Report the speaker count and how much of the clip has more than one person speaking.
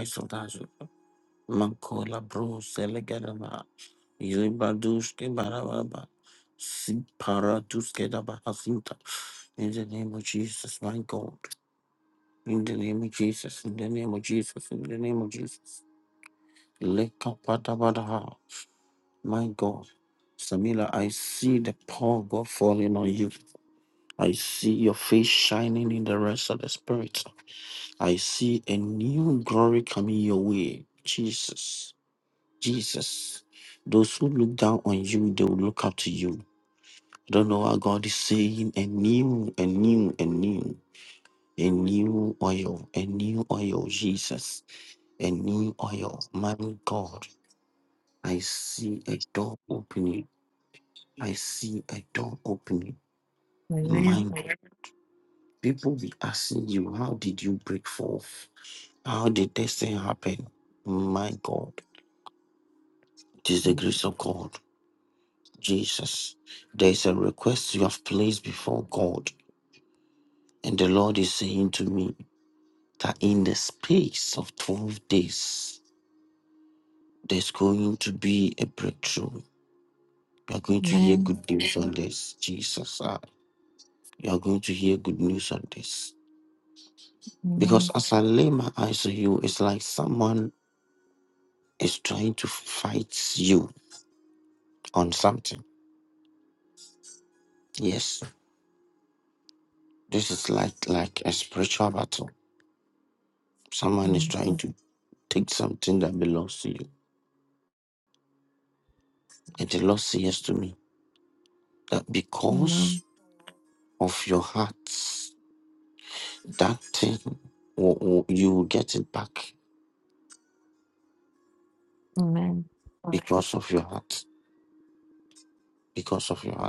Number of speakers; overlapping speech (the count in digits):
2, about 2%